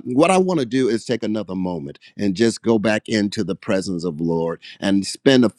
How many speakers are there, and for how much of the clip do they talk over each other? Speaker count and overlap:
one, no overlap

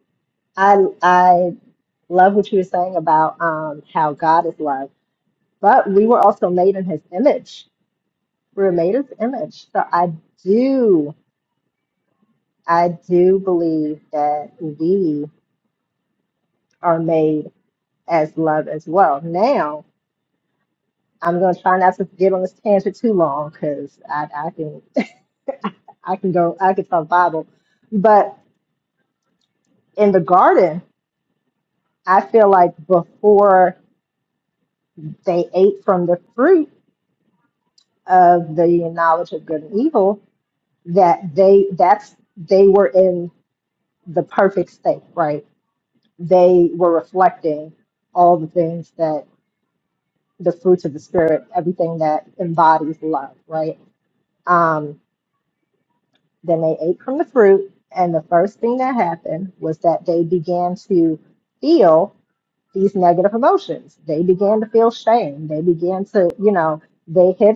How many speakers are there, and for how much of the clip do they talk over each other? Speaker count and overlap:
one, no overlap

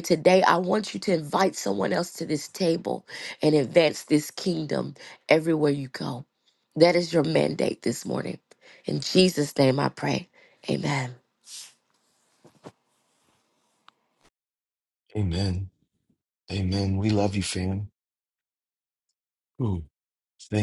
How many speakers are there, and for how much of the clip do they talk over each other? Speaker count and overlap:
two, no overlap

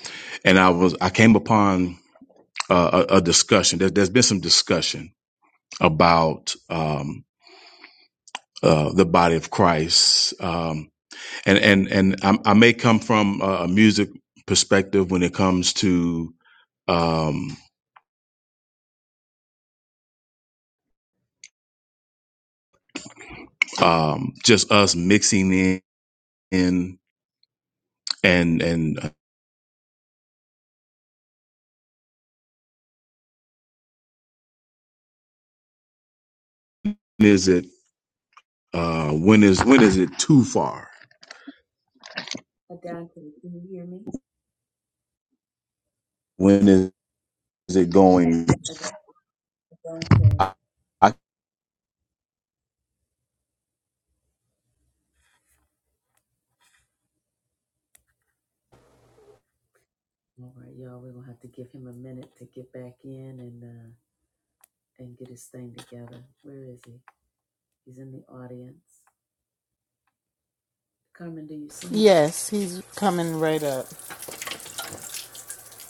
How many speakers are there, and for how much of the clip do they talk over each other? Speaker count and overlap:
three, about 1%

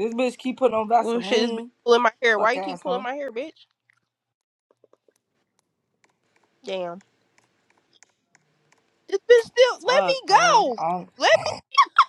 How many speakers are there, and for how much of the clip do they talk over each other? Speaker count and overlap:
two, about 18%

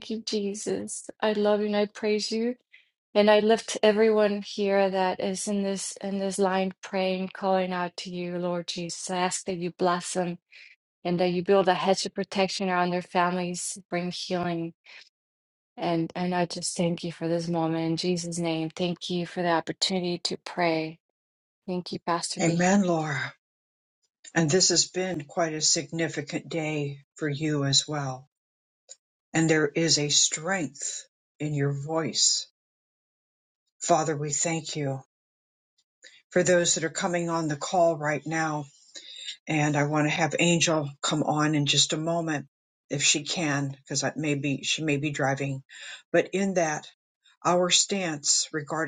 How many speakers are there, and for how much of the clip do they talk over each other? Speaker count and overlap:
two, under 1%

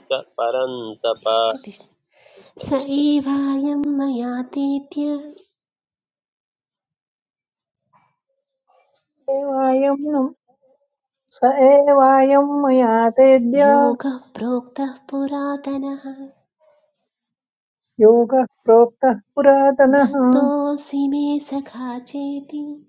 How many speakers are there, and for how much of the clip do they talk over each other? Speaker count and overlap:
three, about 3%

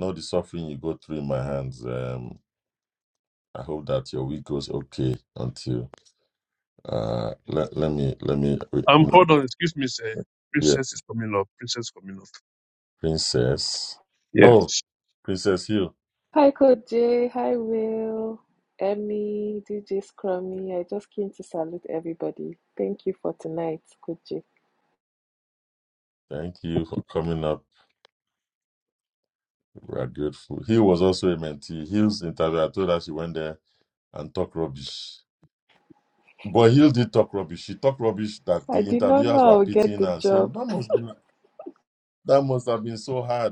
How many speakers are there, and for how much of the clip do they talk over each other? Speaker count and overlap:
three, about 6%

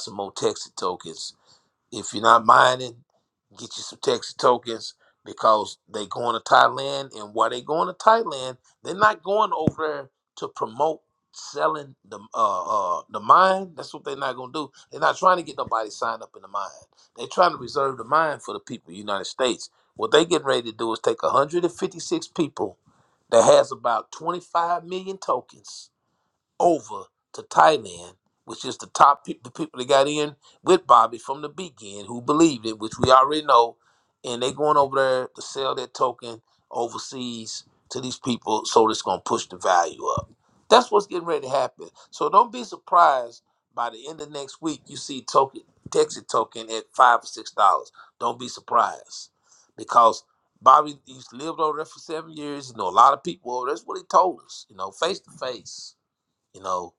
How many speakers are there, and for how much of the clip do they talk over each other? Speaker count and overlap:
one, no overlap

